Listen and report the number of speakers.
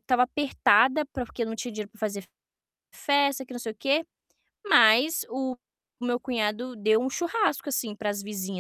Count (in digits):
1